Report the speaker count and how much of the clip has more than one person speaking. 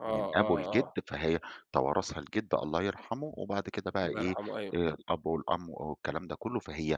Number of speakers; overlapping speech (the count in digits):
2, about 17%